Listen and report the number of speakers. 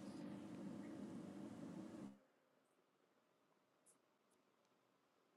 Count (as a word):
zero